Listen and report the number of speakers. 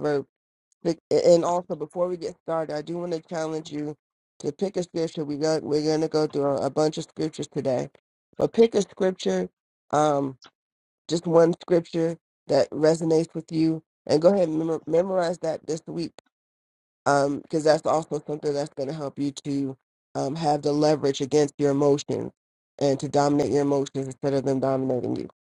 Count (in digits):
1